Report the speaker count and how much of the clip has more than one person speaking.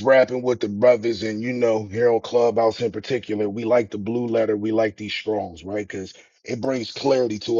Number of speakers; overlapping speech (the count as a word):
one, no overlap